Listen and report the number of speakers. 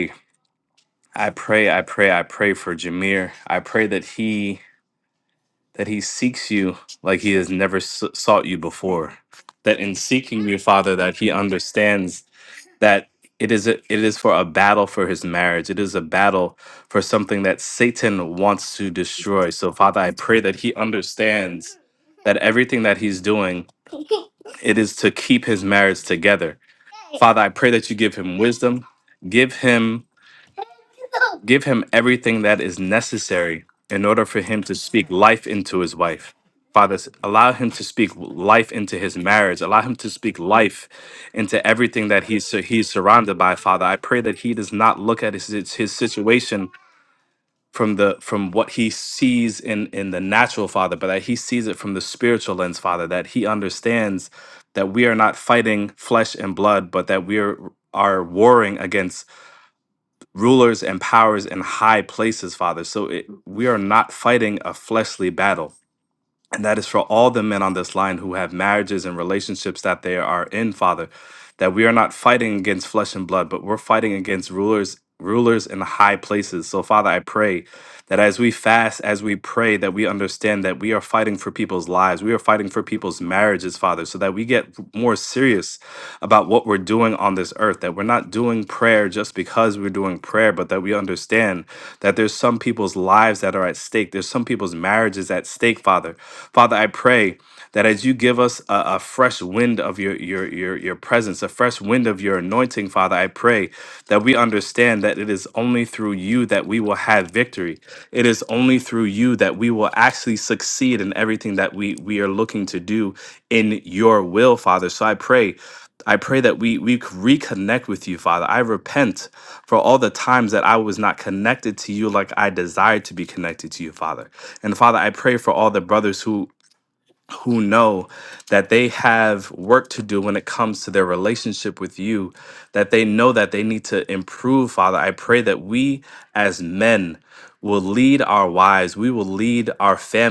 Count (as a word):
one